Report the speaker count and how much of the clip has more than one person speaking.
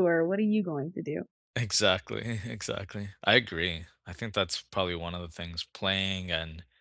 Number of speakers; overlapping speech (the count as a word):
two, no overlap